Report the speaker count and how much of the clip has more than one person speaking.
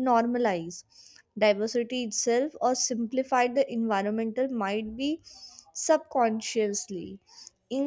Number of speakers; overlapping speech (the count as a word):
one, no overlap